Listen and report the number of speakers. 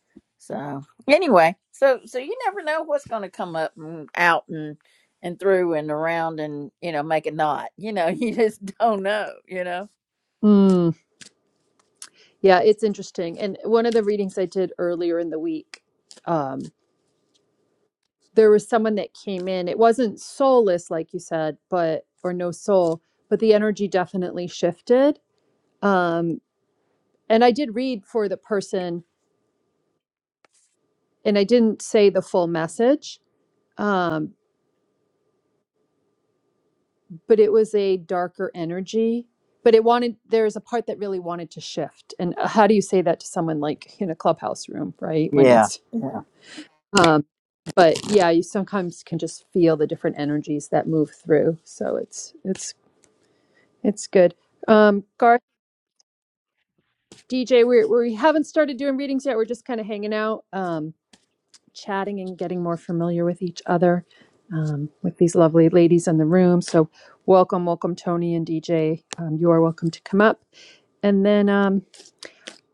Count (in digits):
2